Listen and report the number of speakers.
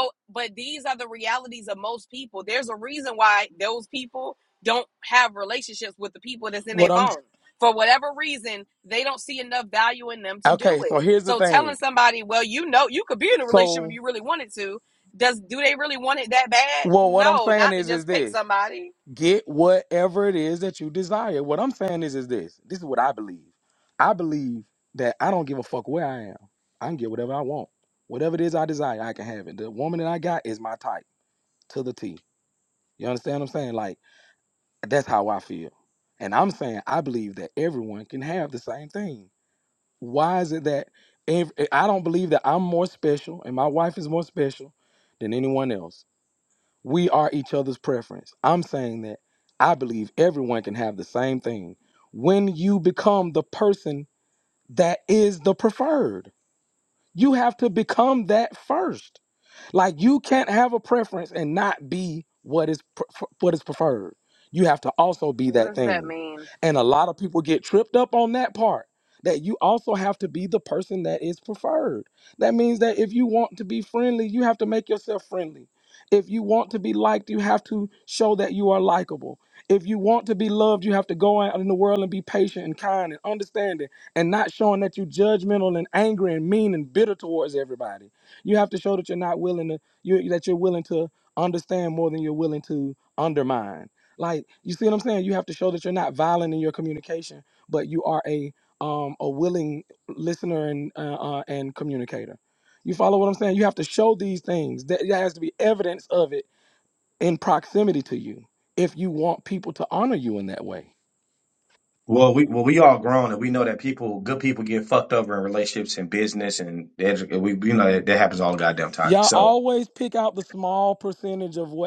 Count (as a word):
three